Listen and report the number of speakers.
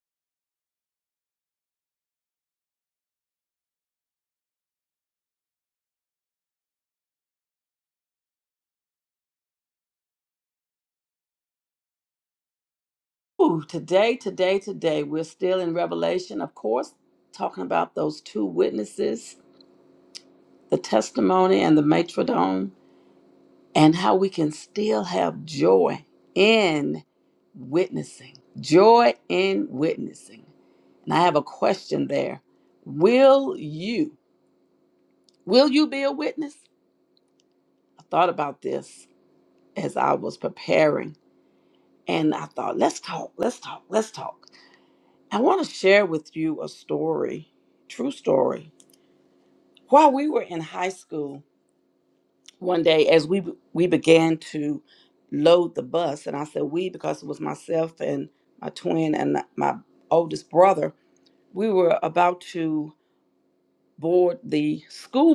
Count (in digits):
1